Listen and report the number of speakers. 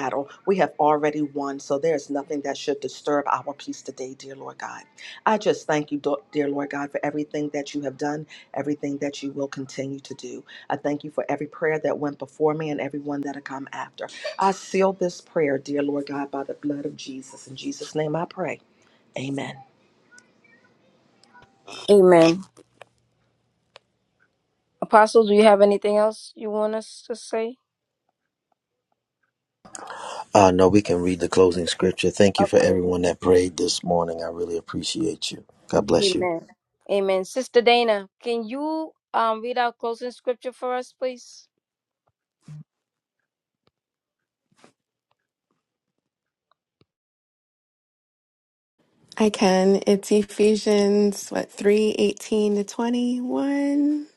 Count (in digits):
4